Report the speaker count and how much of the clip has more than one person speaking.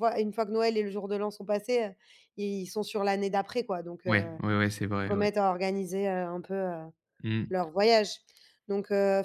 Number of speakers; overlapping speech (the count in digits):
2, about 5%